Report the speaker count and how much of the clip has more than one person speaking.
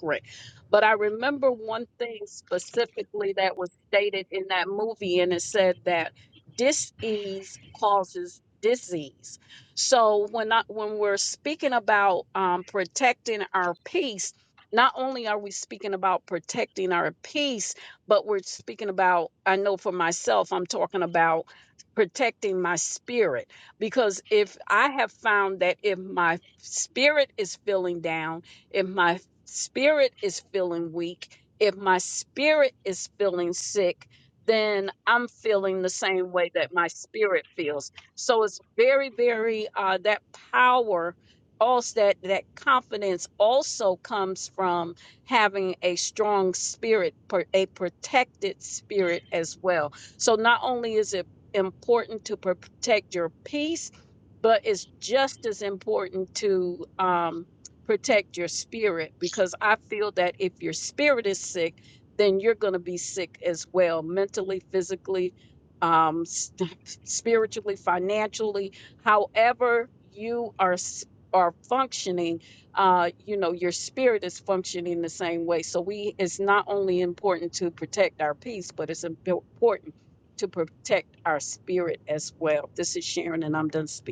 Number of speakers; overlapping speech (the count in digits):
1, no overlap